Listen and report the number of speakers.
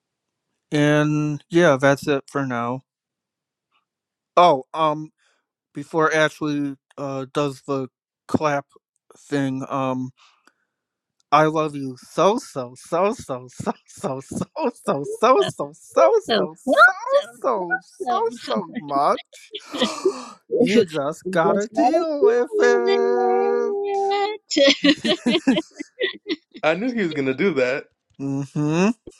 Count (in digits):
3